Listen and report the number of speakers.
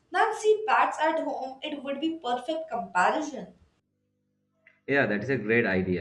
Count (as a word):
two